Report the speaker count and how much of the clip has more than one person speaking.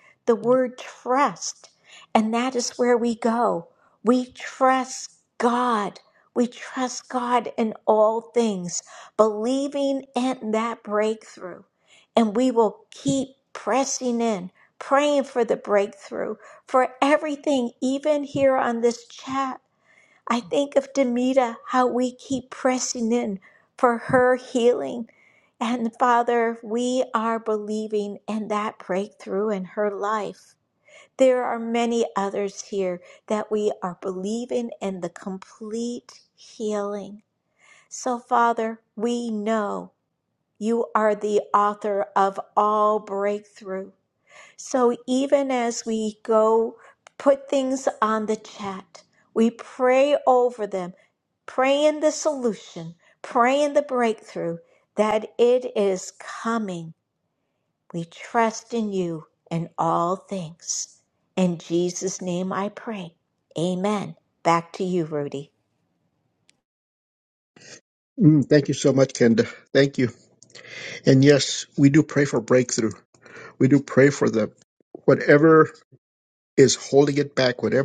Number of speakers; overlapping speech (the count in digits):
2, no overlap